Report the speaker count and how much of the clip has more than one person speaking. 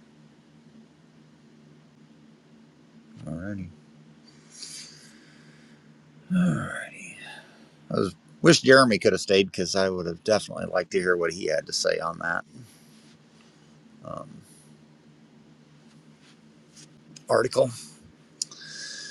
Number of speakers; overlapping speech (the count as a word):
one, no overlap